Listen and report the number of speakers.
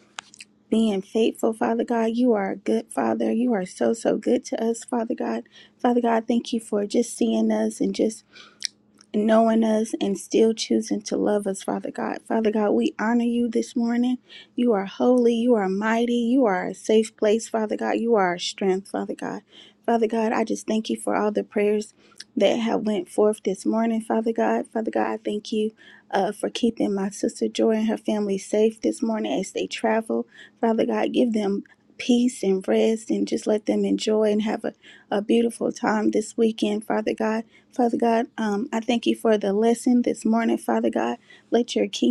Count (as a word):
one